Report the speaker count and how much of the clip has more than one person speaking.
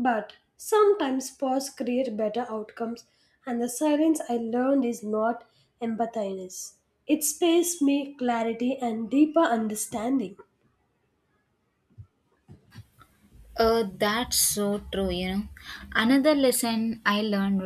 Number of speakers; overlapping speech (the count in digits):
2, no overlap